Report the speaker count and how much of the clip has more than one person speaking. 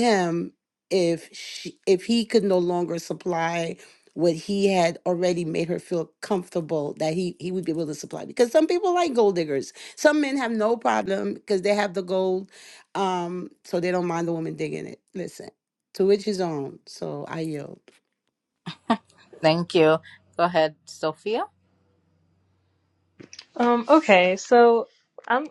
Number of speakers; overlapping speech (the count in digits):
3, no overlap